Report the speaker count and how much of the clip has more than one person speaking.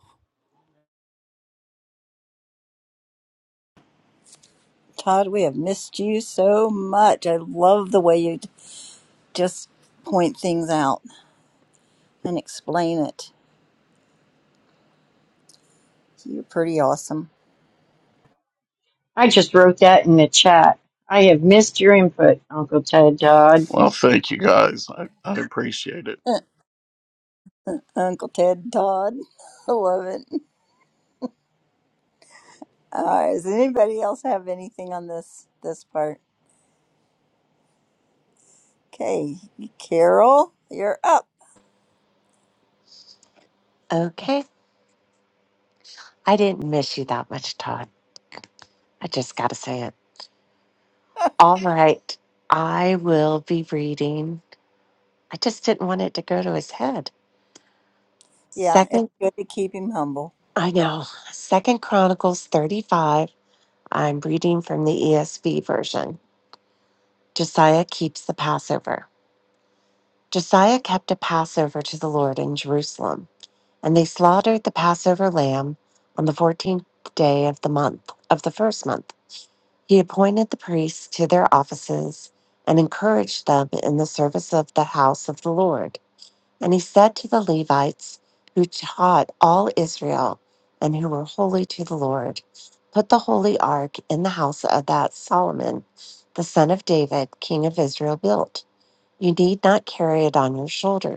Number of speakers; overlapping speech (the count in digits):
4, under 1%